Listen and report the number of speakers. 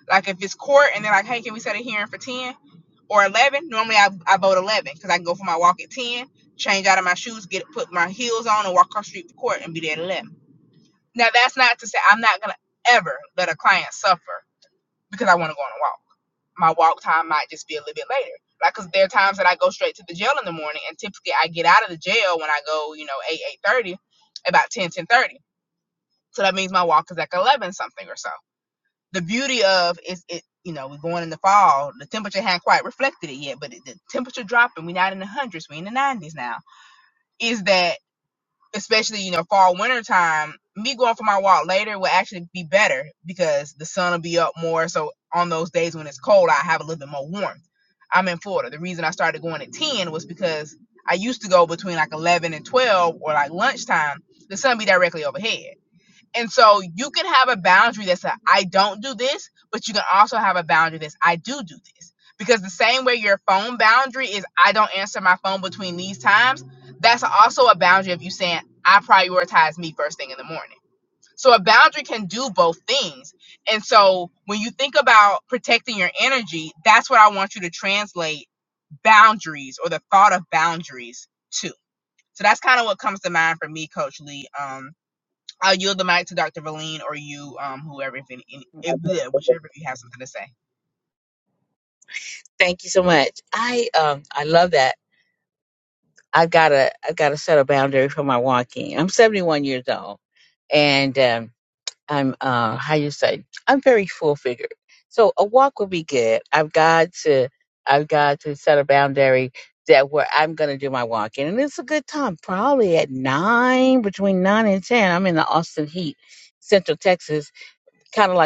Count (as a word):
two